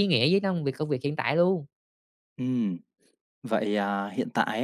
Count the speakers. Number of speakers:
2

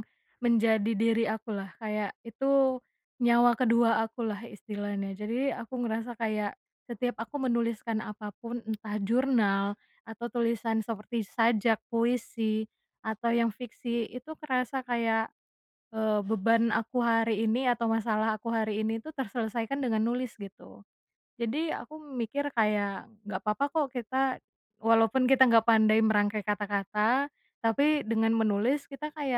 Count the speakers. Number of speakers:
1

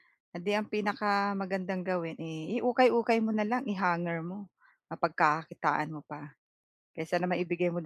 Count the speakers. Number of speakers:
1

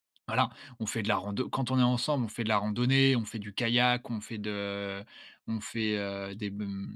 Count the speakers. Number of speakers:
1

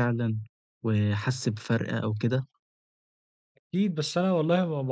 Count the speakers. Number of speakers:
2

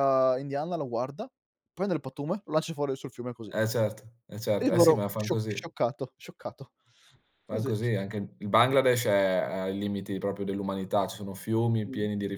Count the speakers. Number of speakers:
2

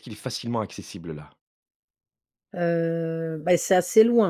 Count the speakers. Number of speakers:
2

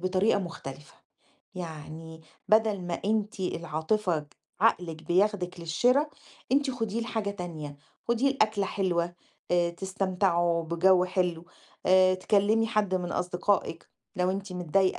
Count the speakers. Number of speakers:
1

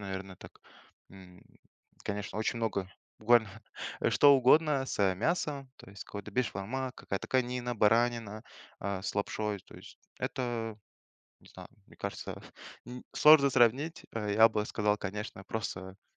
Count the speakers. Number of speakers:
1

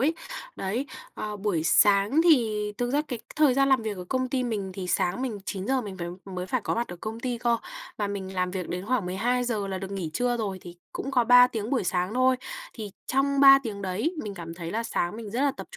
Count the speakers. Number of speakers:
1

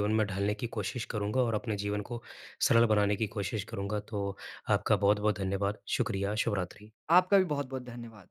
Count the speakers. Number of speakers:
2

